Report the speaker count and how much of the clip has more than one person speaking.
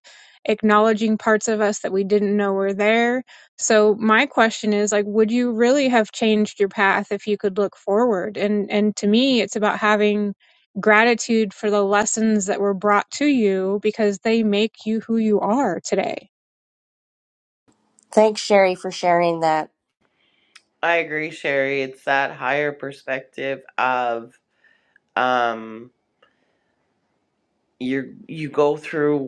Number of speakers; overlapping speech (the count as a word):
three, no overlap